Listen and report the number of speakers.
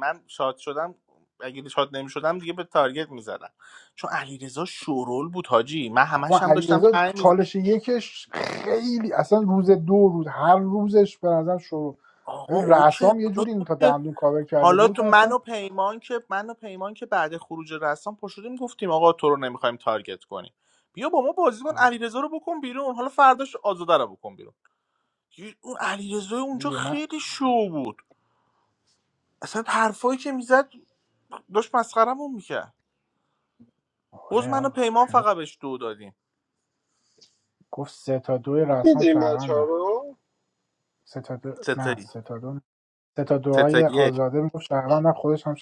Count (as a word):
three